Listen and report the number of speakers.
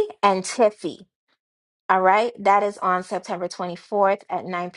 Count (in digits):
1